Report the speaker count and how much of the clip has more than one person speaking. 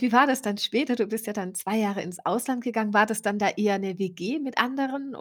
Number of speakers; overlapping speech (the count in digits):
1, no overlap